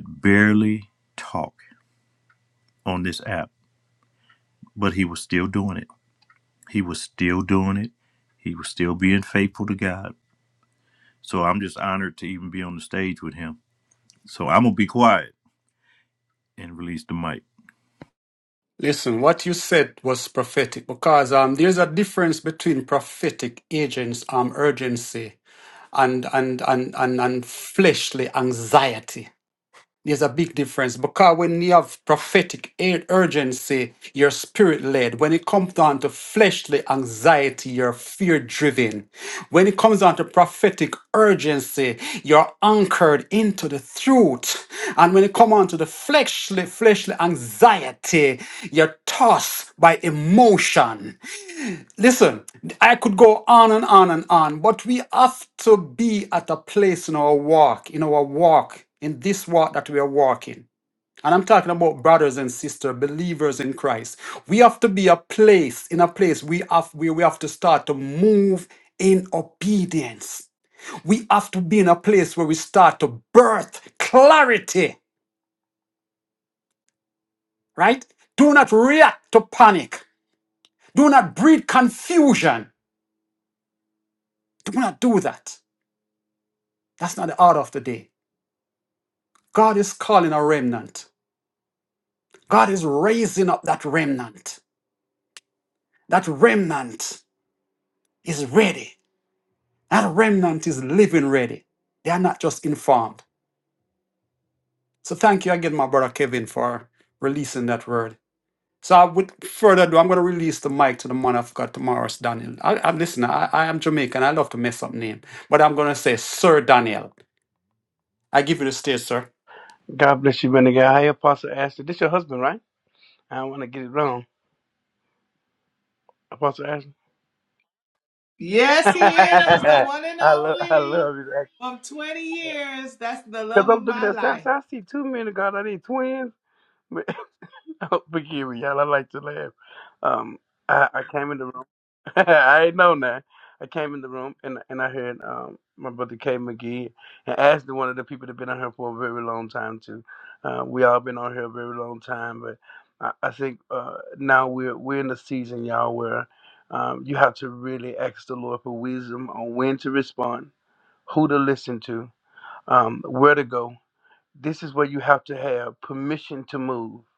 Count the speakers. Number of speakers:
4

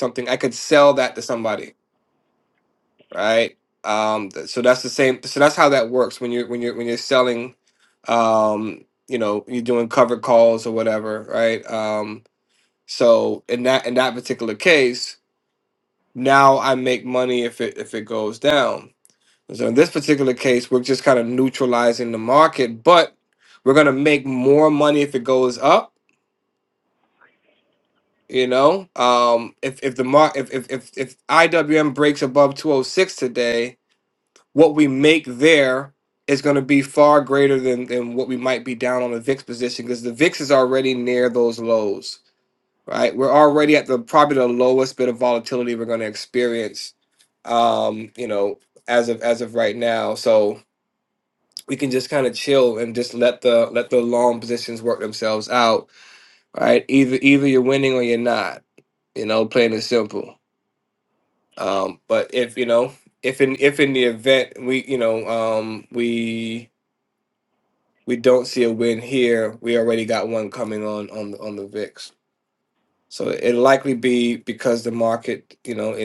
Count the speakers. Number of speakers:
1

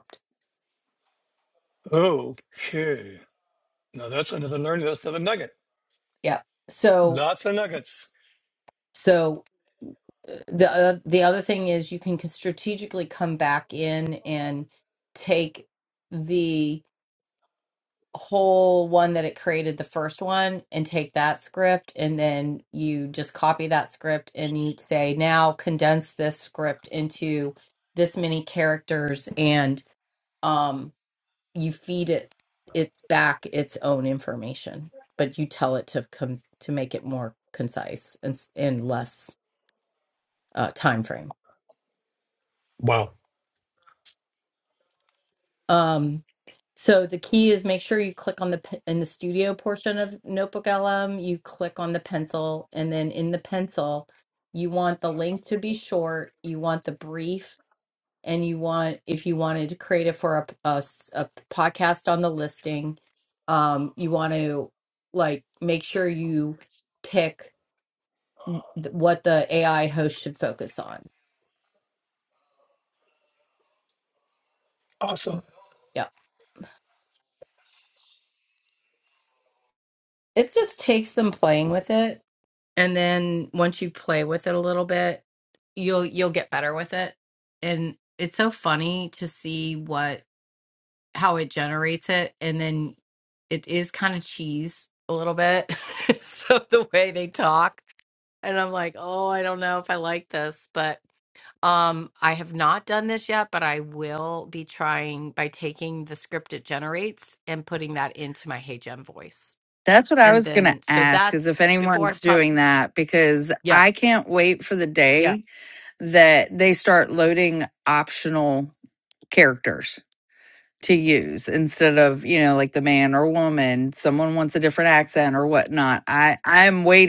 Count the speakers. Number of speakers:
3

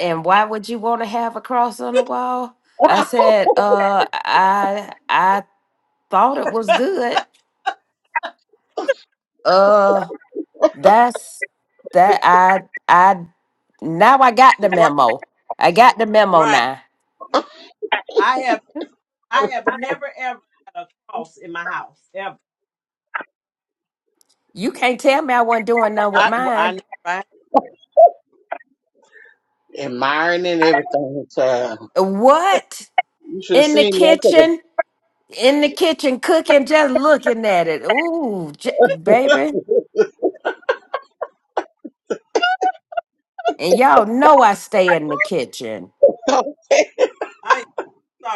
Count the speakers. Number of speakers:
3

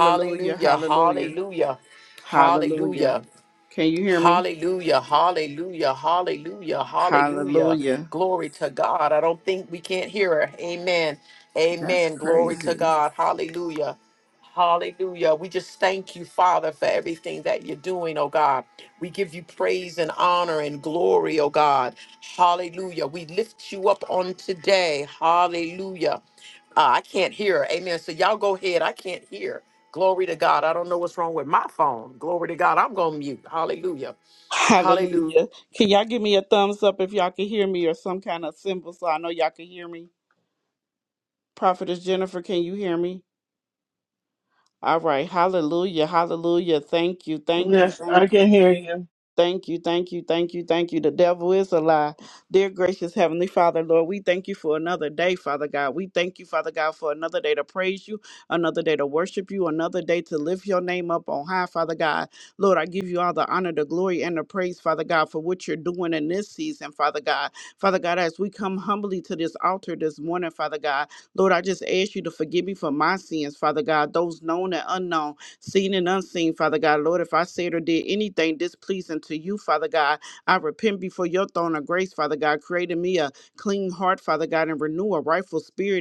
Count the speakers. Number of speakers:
3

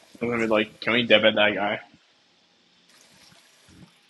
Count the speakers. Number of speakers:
1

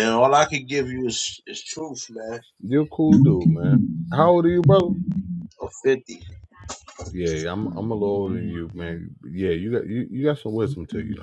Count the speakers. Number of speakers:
2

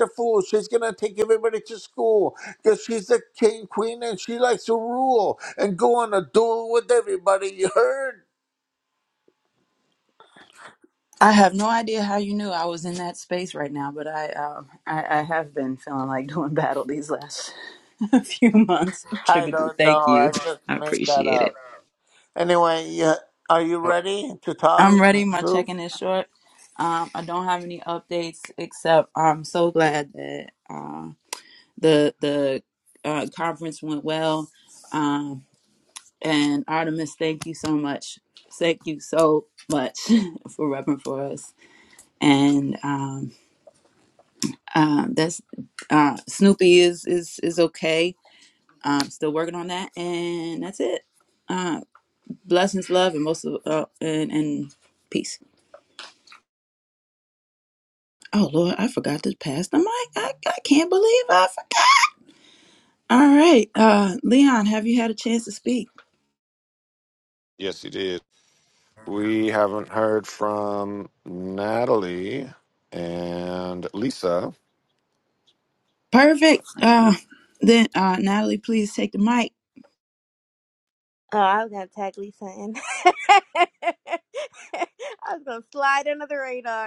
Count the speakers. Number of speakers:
4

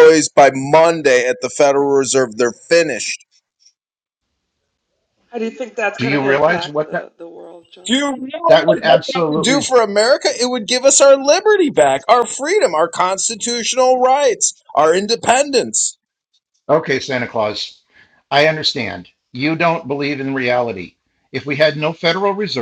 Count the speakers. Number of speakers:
3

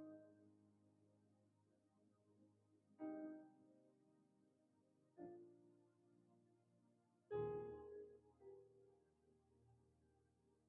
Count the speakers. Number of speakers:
0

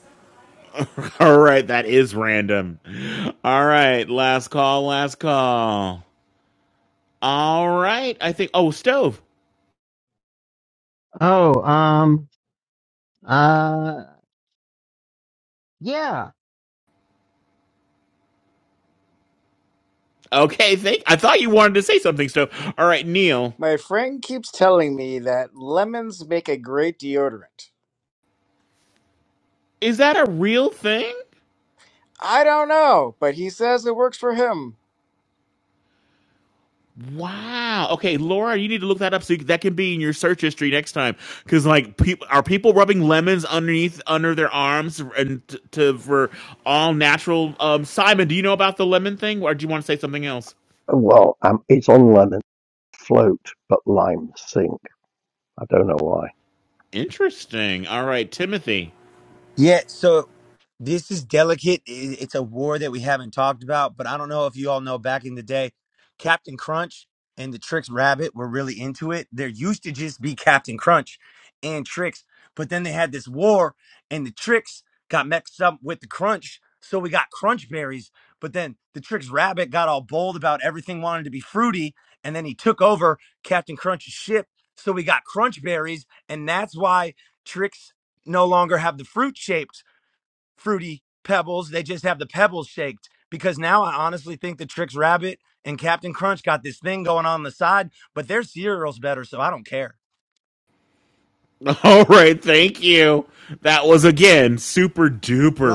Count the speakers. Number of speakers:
5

